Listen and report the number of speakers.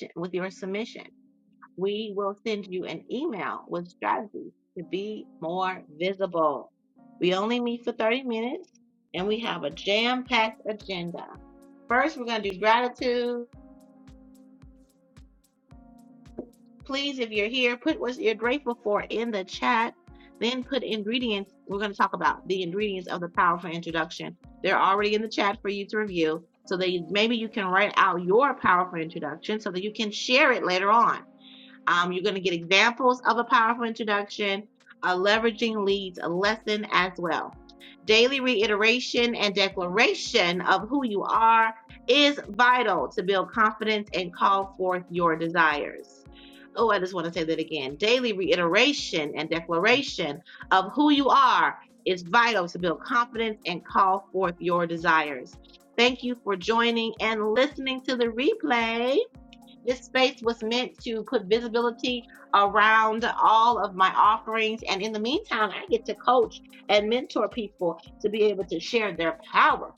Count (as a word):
one